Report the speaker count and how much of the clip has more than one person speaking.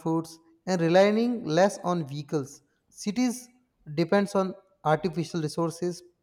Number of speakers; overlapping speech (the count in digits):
1, no overlap